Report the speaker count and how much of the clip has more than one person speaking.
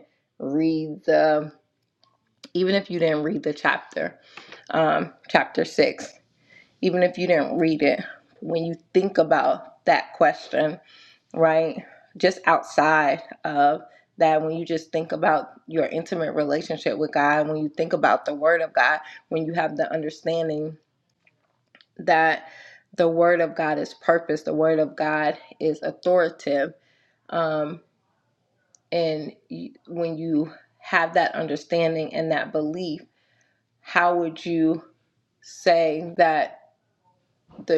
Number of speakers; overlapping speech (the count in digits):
1, no overlap